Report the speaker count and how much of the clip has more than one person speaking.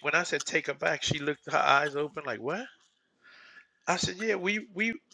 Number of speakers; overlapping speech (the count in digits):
1, no overlap